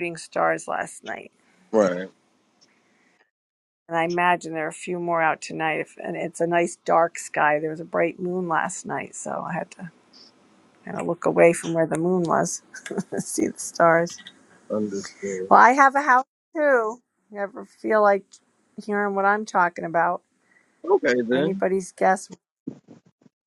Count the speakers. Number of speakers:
two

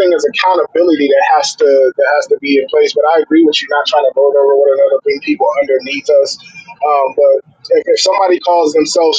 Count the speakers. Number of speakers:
one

